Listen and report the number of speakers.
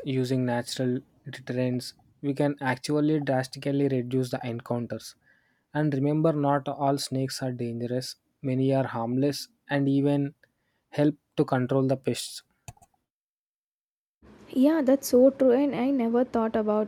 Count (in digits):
2